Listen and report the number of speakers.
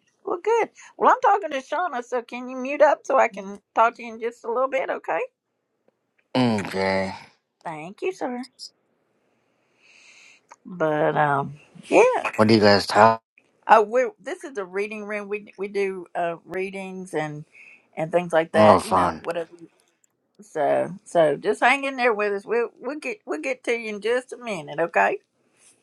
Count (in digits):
2